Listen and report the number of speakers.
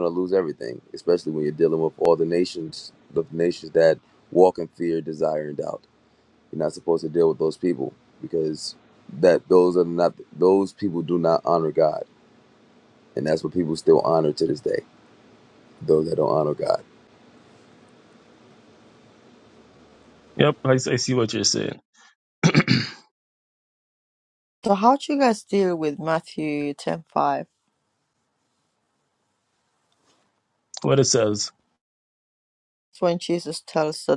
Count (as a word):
three